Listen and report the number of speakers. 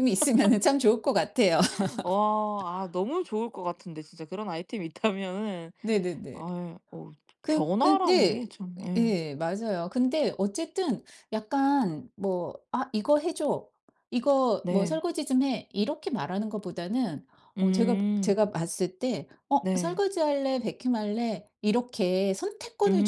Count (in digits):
2